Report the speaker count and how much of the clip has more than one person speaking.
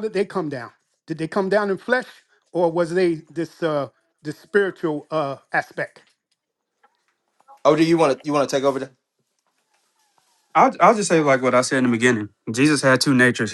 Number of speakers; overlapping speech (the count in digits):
3, no overlap